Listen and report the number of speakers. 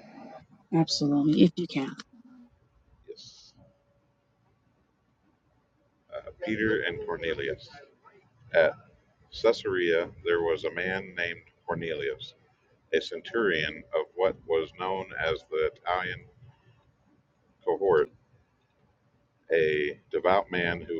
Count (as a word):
two